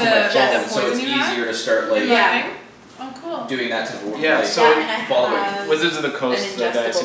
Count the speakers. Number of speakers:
four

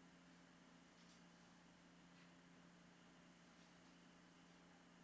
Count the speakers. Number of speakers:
zero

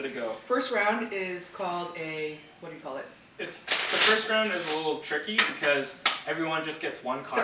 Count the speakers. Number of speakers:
two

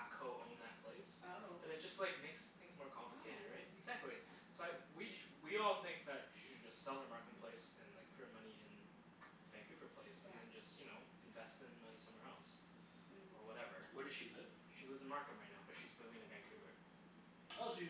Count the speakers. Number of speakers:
three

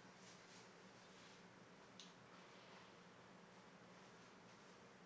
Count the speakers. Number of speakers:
zero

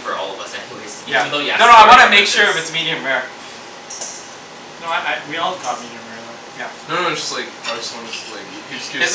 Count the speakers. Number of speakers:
four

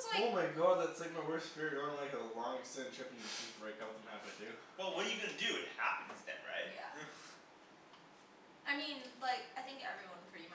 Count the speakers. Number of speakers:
three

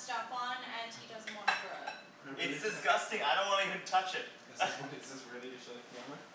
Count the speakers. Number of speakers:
three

